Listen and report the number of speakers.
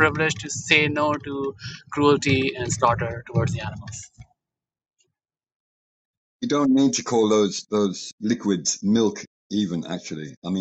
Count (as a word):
two